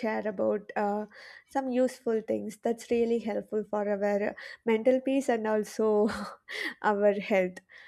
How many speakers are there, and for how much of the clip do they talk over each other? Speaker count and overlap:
one, no overlap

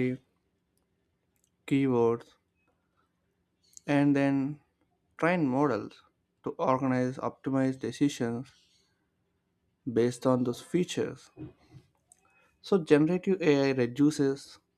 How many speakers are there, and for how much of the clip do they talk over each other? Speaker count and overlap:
one, no overlap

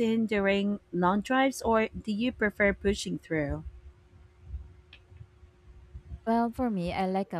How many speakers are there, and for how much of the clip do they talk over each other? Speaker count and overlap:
two, no overlap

